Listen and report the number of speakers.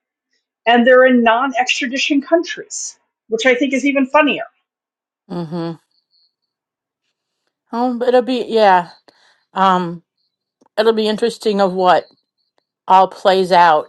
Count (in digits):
2